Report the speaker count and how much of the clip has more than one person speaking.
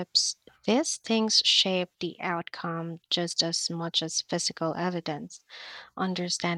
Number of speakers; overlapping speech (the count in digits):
1, no overlap